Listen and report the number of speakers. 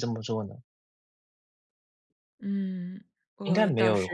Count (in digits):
2